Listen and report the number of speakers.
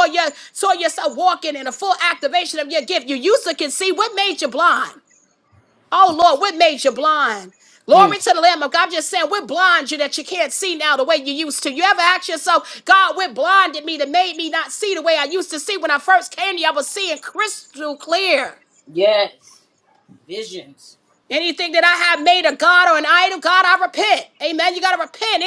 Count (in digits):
2